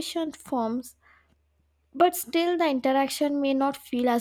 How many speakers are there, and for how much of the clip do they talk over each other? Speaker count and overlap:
one, no overlap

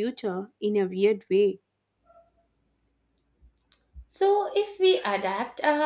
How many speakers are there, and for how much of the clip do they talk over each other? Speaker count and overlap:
two, no overlap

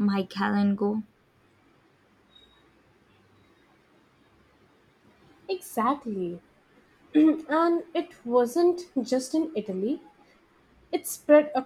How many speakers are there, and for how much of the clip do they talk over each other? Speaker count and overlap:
two, no overlap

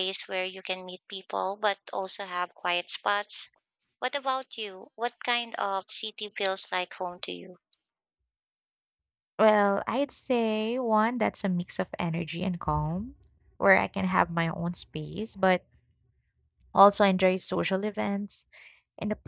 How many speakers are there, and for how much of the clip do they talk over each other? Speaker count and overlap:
two, no overlap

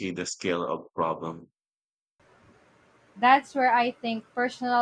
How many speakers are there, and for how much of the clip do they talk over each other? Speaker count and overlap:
two, no overlap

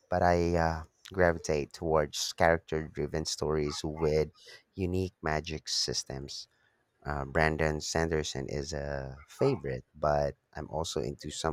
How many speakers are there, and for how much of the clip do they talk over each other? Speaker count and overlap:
one, no overlap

